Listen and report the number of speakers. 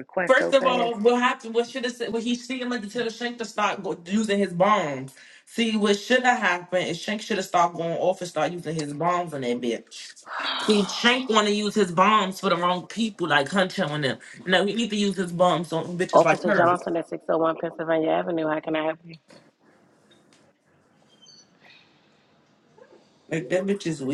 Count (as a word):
two